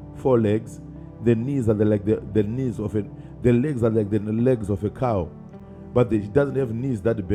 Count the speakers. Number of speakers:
one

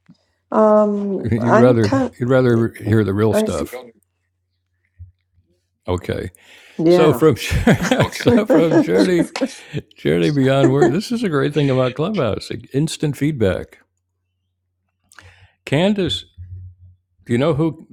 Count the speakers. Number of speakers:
two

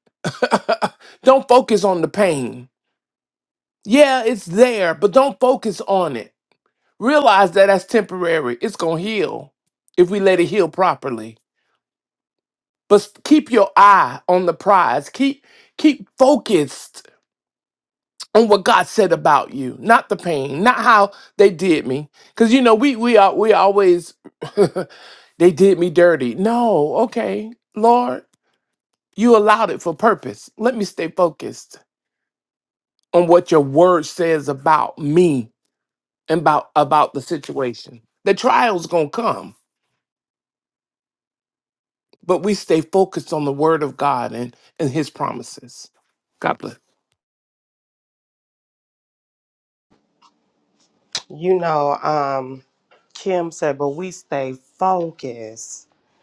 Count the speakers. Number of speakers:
two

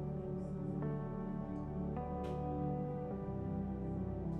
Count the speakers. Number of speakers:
zero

